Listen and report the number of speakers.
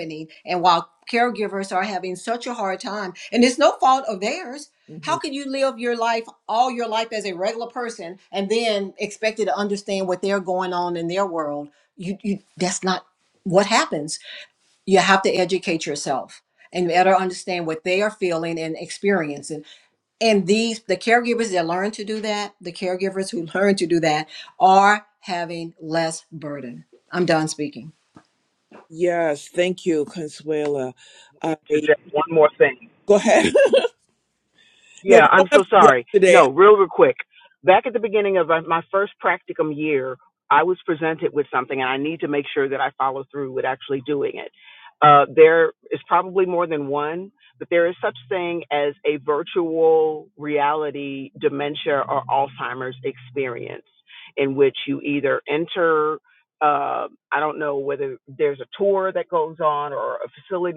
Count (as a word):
three